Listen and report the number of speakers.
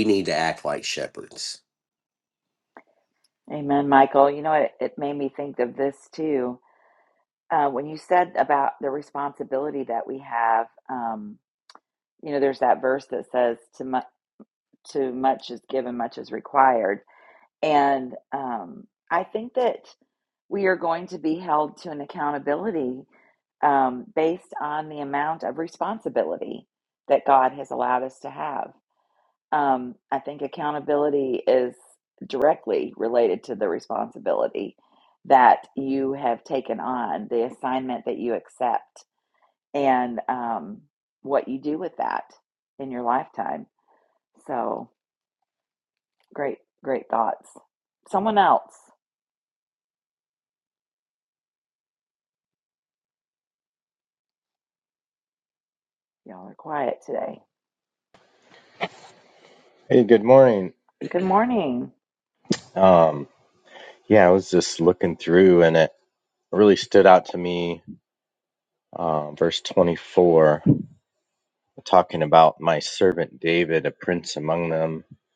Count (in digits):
3